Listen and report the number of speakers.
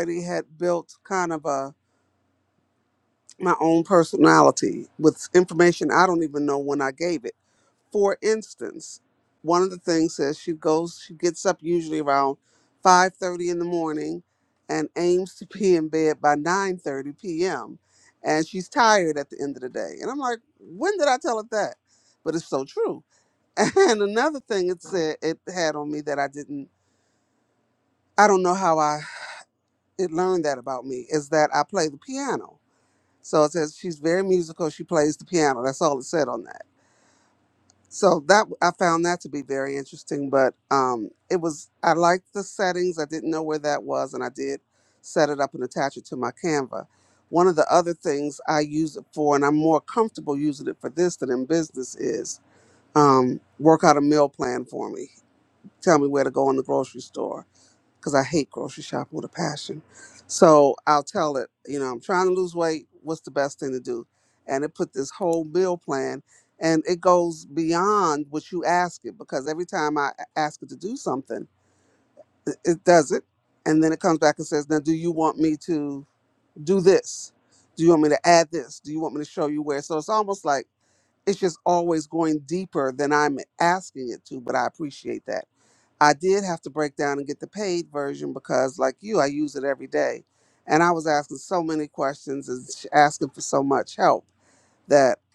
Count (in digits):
1